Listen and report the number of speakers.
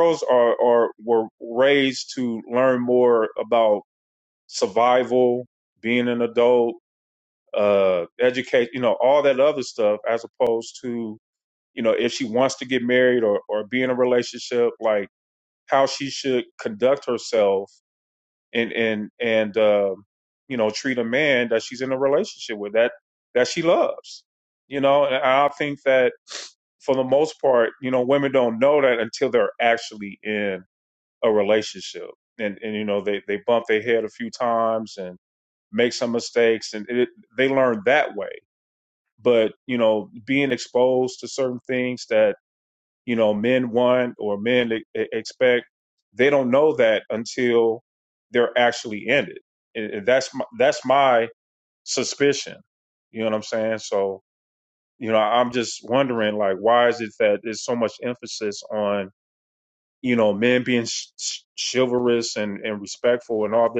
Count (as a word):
one